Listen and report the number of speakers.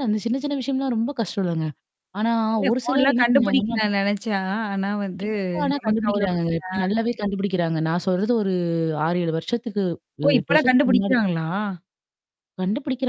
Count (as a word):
two